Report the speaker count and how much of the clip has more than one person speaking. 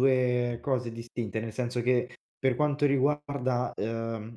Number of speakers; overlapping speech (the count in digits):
1, no overlap